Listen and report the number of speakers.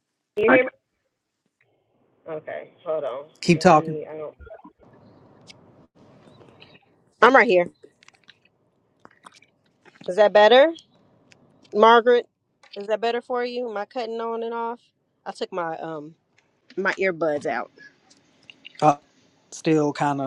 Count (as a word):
two